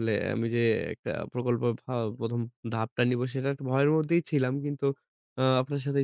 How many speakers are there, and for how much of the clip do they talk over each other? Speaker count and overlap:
1, no overlap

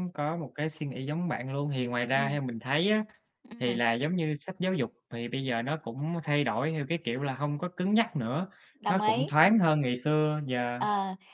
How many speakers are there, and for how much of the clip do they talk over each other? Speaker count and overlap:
2, about 7%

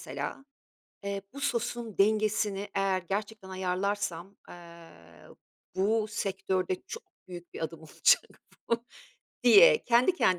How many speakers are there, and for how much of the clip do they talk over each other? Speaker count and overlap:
1, no overlap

